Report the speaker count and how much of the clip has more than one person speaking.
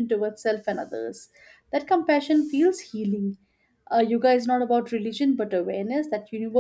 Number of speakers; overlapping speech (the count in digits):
1, no overlap